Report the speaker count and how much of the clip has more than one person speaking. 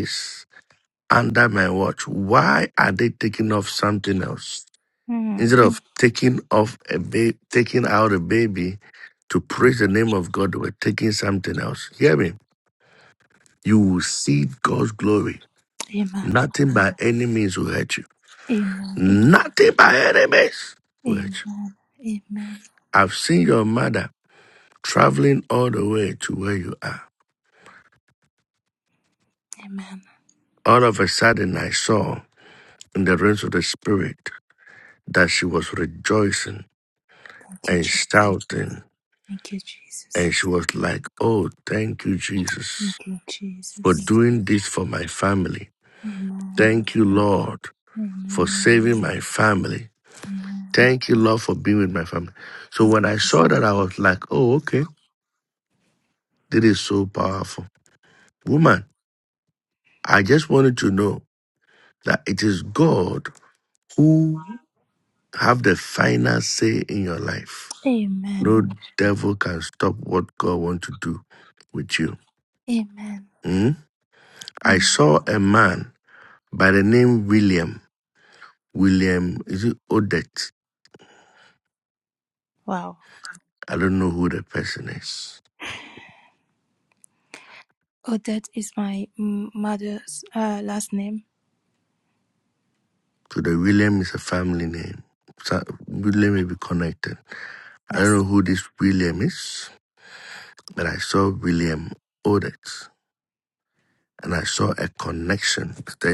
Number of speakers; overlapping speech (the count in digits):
2, about 3%